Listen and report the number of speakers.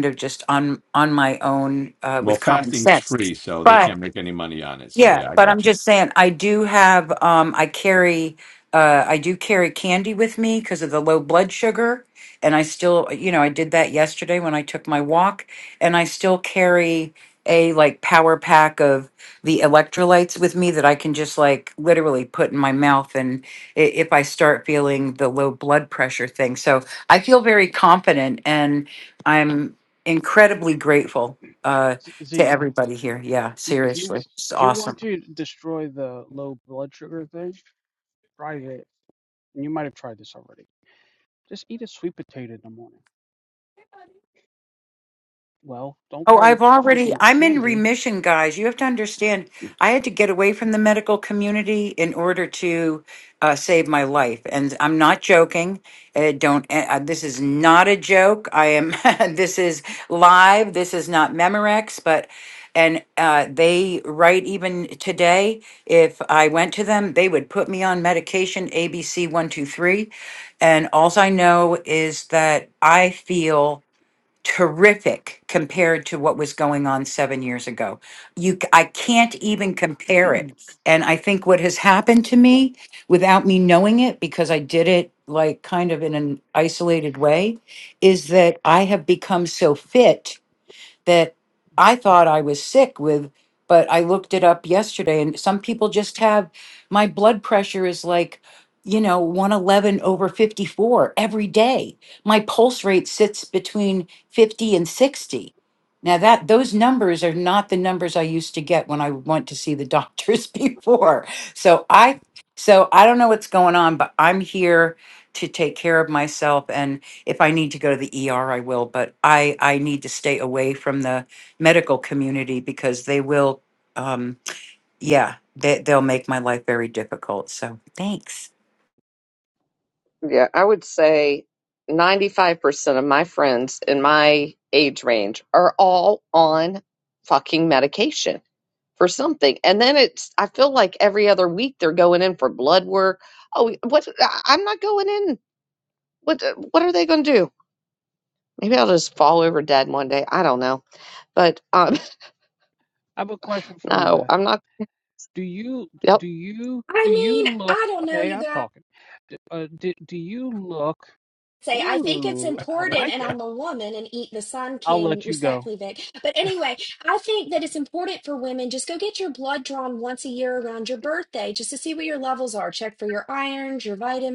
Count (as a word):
five